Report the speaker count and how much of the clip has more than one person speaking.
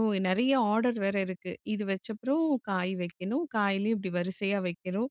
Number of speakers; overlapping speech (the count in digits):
1, no overlap